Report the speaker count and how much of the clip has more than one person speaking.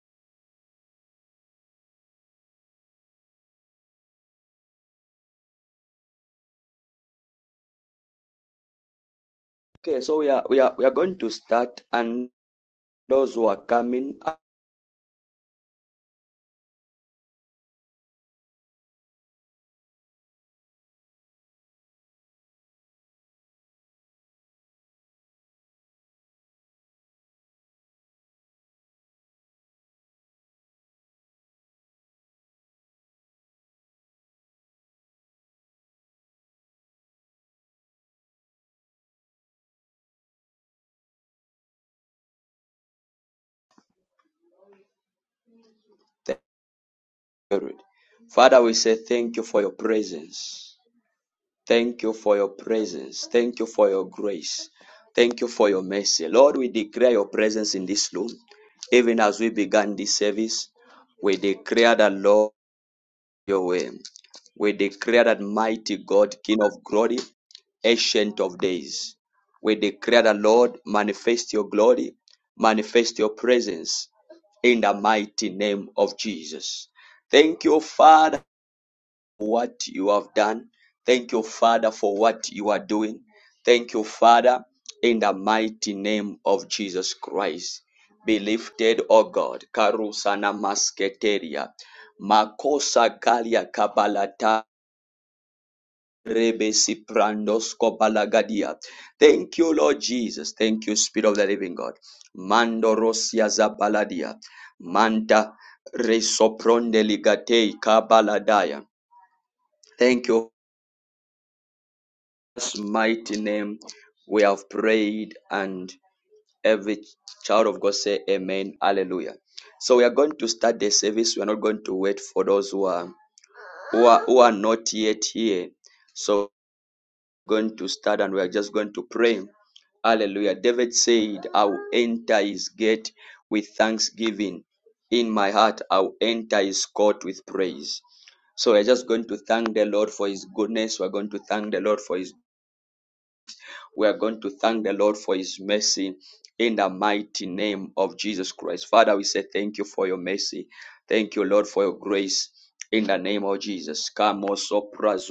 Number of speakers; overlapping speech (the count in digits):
1, no overlap